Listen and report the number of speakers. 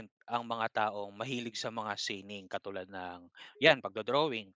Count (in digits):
1